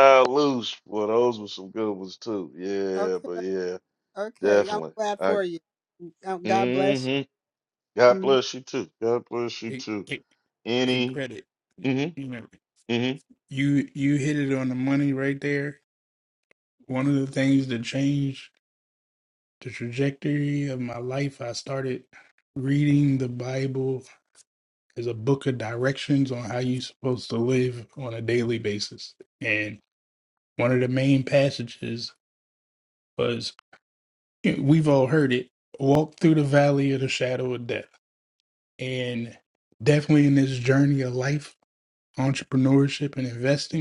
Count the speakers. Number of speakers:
three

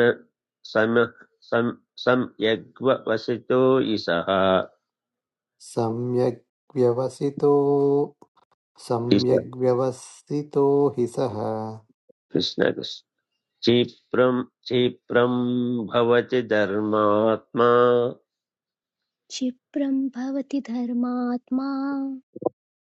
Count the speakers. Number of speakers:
three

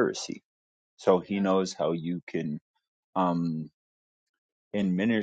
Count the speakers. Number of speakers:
one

